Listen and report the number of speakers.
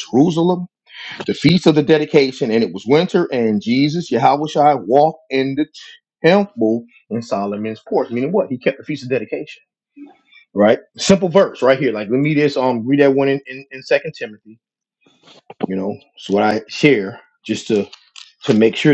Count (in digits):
1